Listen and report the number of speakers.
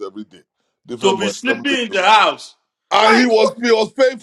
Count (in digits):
2